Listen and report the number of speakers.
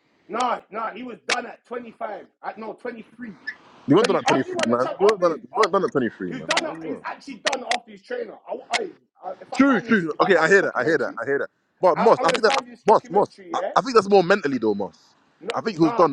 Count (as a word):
two